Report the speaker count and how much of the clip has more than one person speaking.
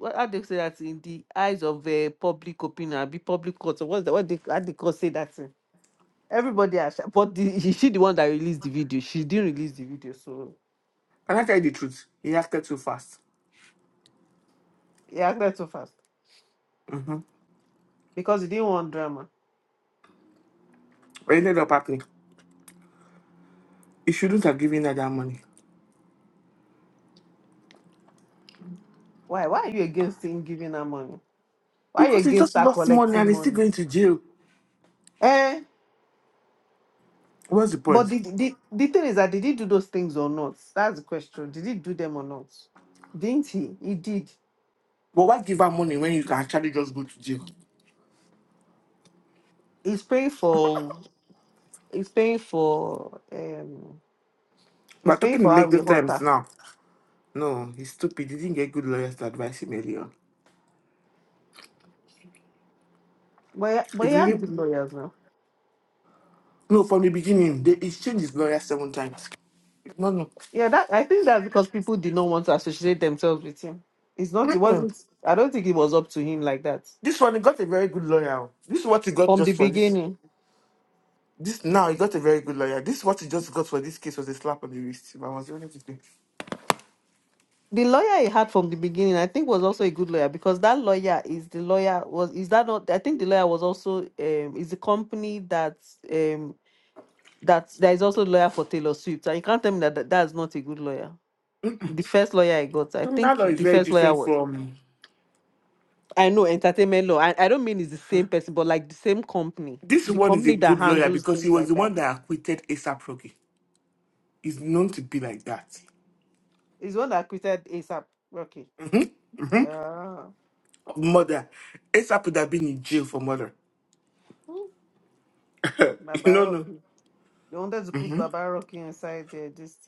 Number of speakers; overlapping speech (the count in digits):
2, about 6%